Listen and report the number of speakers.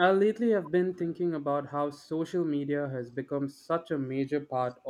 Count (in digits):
1